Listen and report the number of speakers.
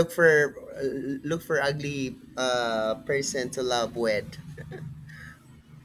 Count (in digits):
1